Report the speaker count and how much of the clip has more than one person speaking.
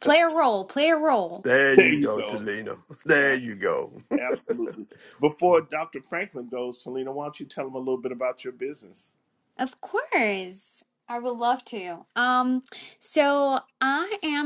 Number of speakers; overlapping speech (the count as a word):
three, about 6%